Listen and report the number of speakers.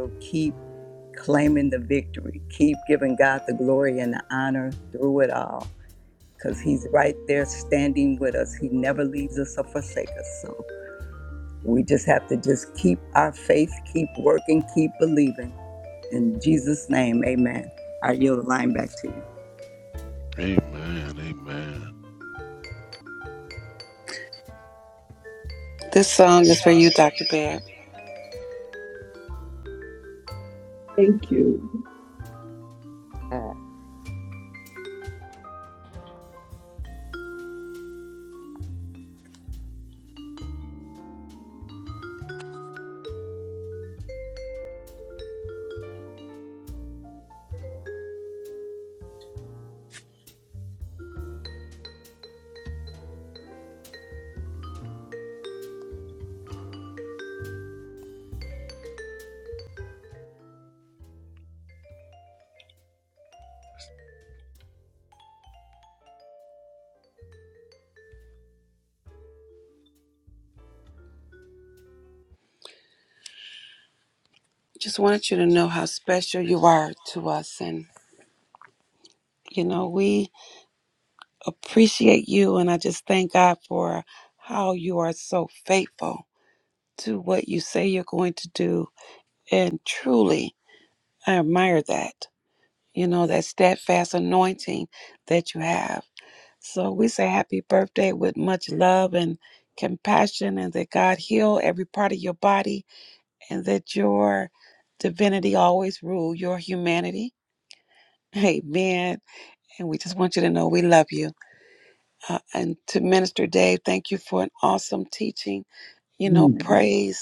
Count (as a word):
four